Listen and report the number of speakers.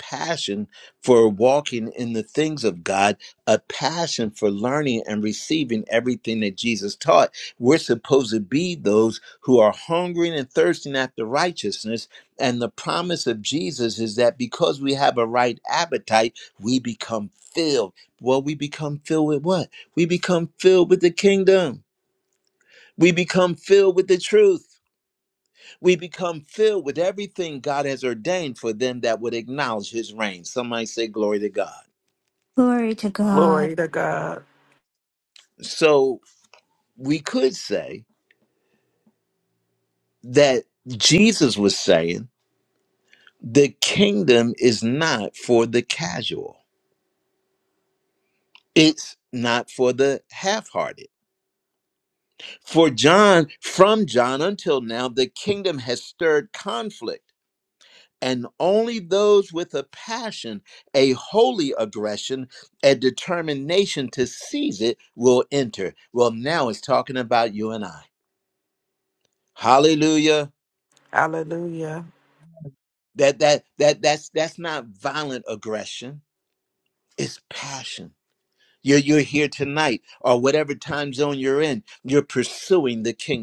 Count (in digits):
3